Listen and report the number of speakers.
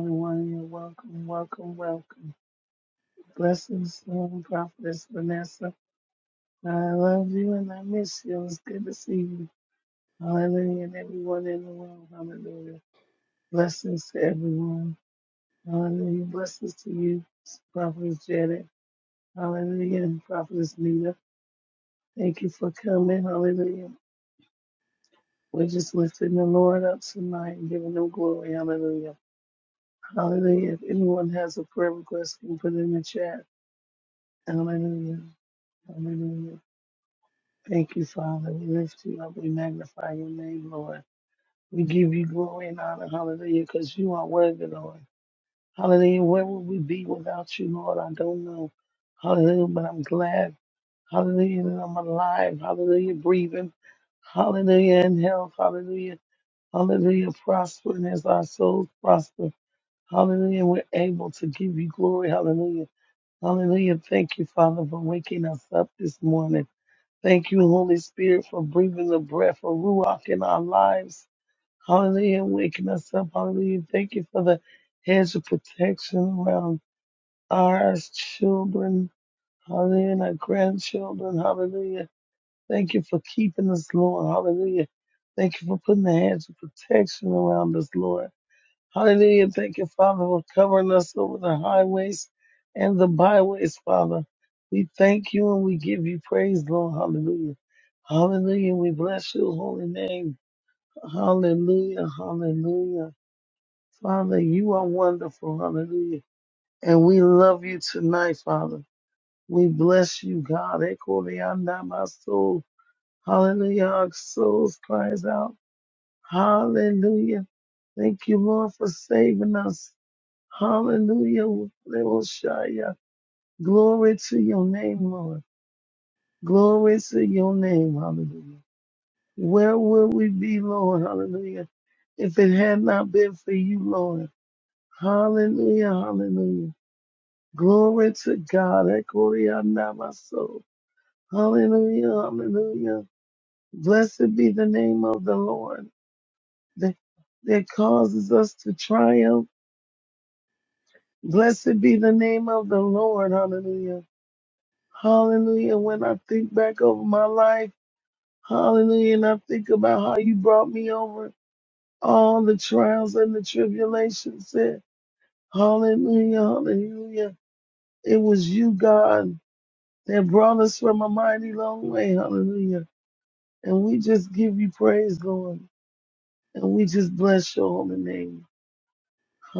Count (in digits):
1